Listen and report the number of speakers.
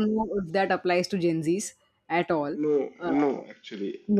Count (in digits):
2